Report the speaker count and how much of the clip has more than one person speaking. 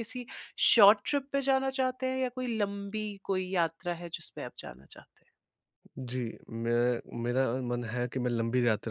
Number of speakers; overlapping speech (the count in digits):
2, no overlap